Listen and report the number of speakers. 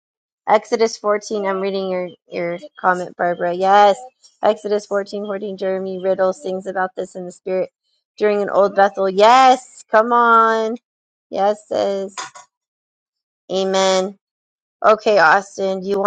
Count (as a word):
one